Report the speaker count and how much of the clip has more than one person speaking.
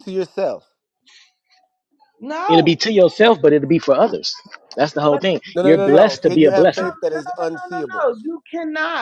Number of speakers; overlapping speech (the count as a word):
three, about 29%